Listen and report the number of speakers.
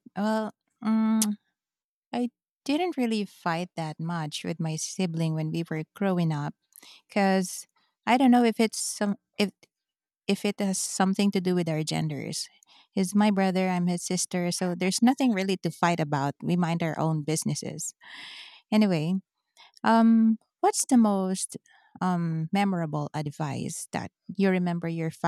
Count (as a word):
one